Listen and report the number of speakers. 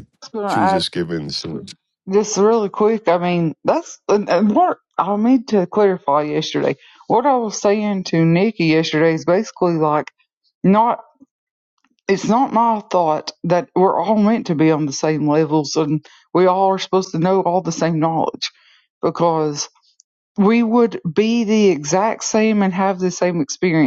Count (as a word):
two